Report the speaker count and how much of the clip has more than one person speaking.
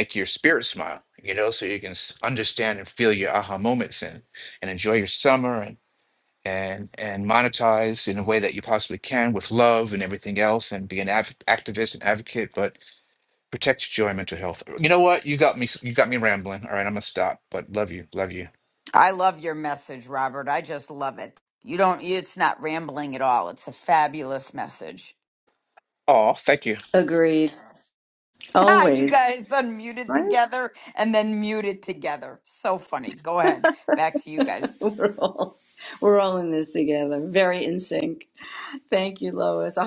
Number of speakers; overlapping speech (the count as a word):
three, about 2%